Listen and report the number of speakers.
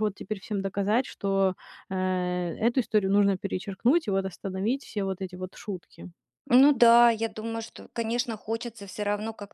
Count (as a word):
two